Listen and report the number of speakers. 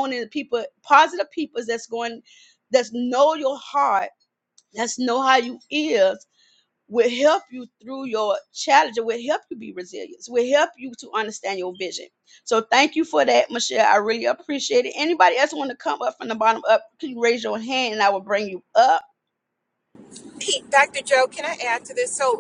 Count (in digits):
2